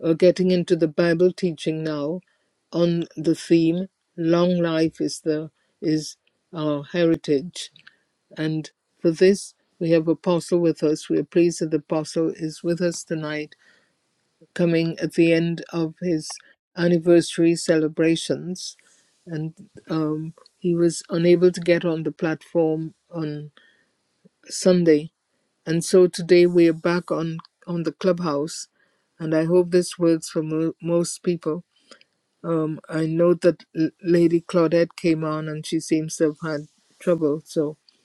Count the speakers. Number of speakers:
1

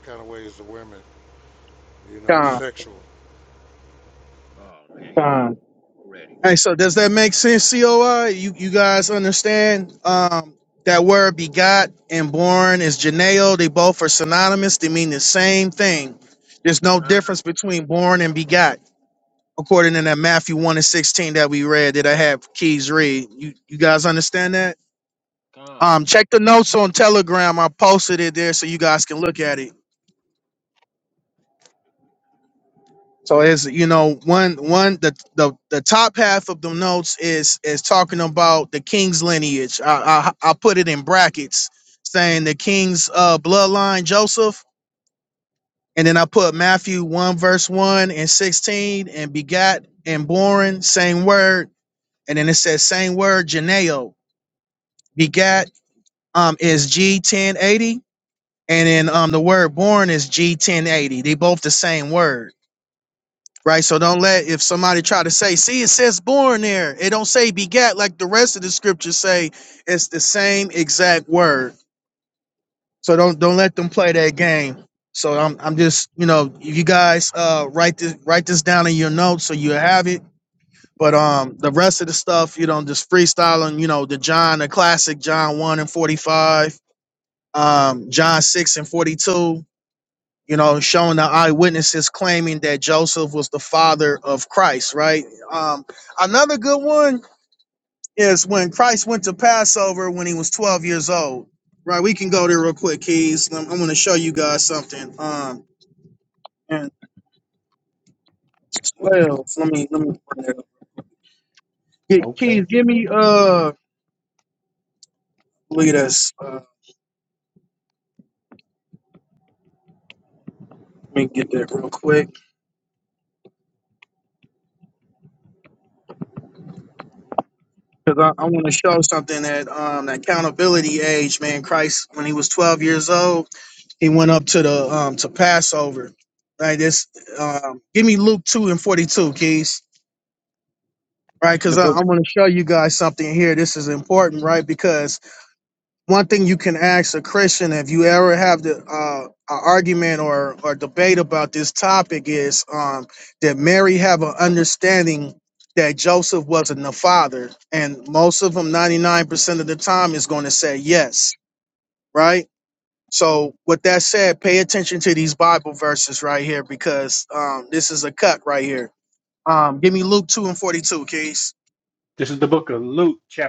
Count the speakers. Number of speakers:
4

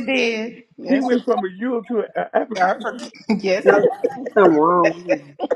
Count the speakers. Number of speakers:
3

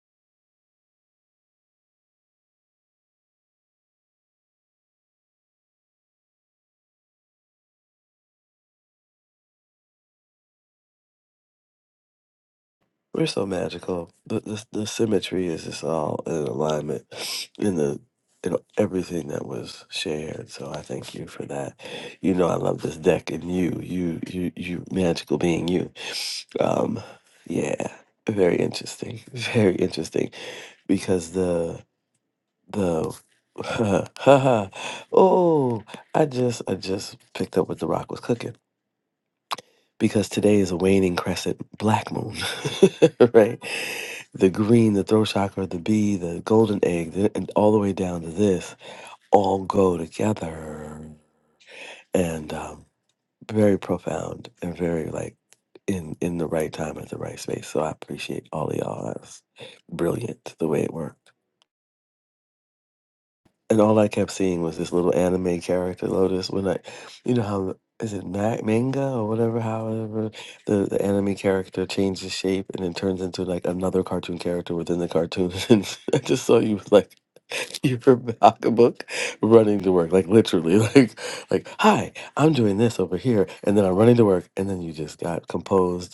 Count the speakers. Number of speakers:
1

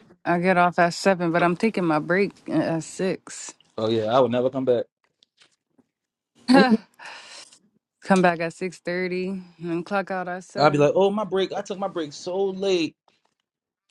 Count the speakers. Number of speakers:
2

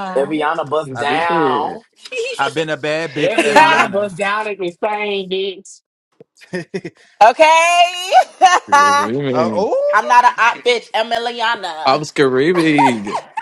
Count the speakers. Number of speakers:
4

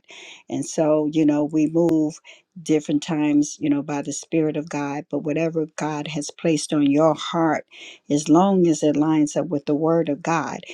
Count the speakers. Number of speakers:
1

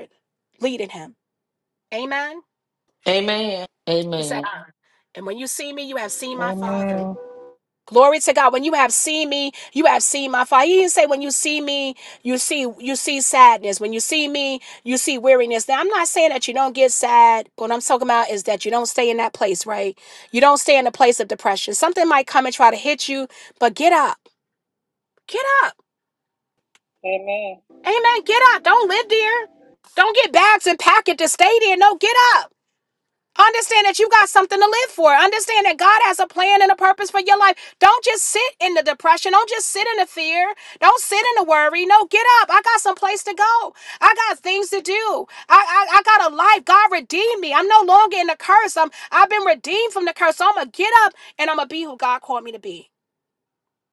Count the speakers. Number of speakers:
3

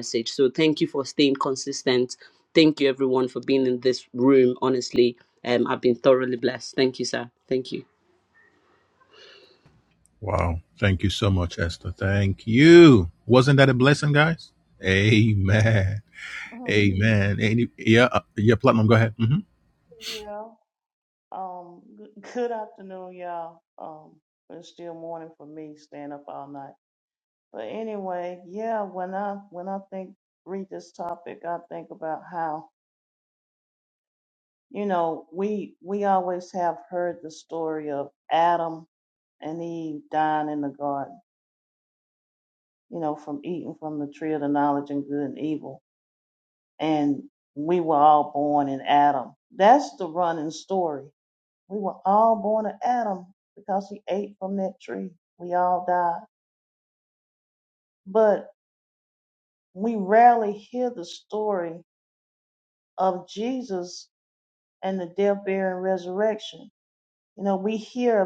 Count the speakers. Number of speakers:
3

